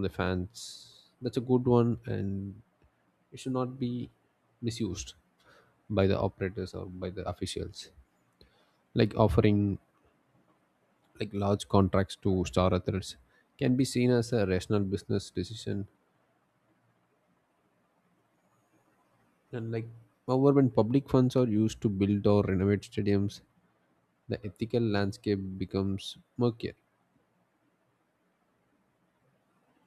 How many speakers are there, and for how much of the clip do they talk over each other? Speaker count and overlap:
one, no overlap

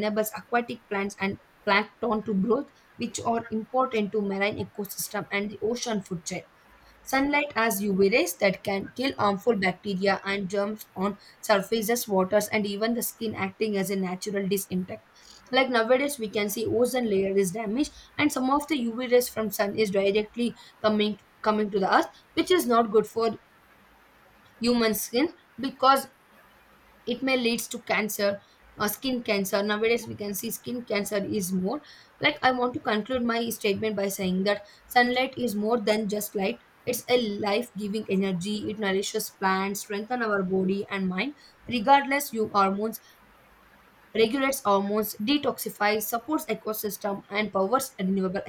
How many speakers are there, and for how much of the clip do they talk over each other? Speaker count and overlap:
one, no overlap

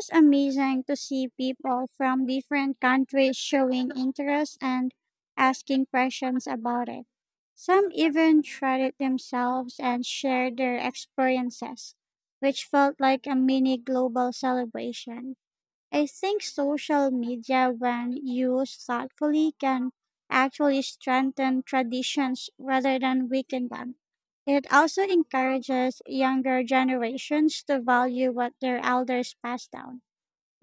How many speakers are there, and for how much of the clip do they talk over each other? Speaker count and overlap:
one, no overlap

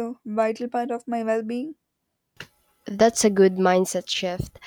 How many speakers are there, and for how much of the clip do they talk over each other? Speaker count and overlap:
two, no overlap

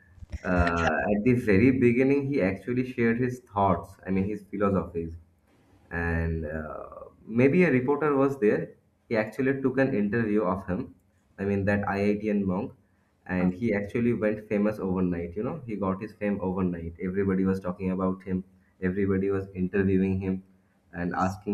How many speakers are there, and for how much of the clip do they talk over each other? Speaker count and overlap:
one, no overlap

